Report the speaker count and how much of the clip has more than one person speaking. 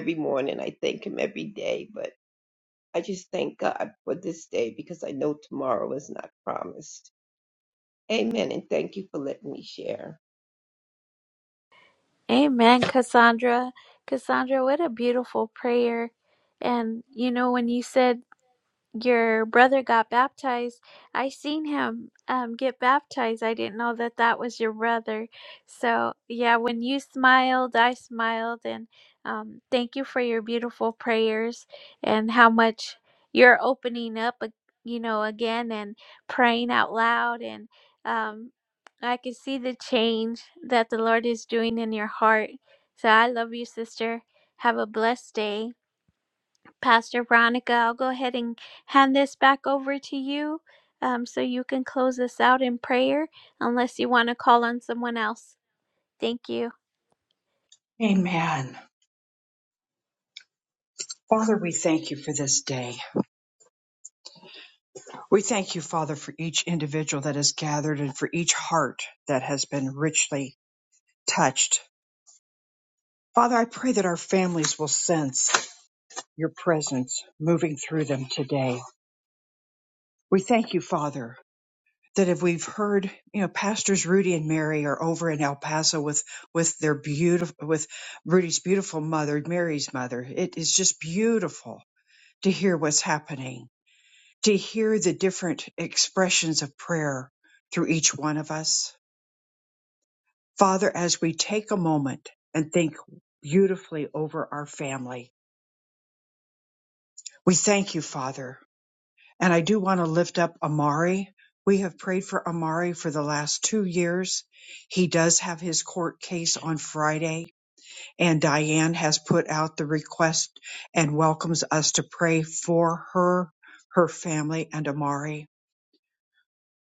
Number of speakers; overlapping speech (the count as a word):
three, no overlap